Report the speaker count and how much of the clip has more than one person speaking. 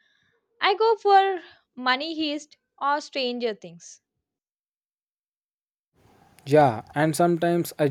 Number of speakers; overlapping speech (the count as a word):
two, no overlap